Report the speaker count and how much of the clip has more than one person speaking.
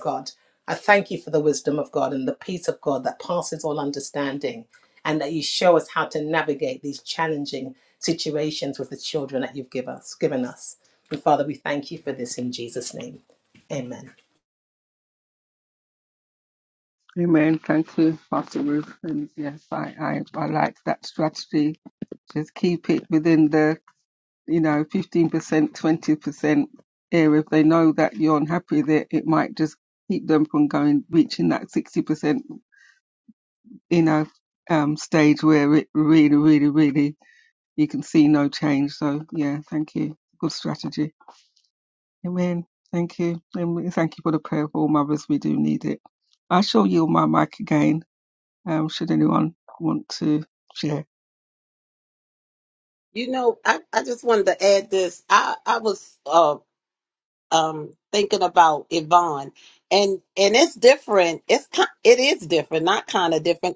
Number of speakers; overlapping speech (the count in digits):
3, no overlap